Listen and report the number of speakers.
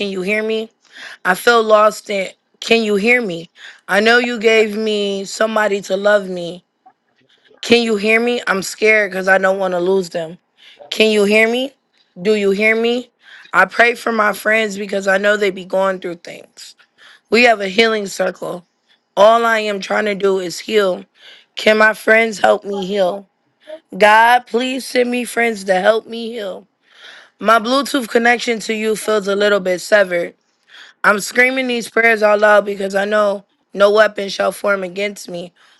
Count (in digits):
1